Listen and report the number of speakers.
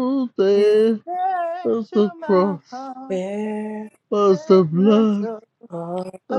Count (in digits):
3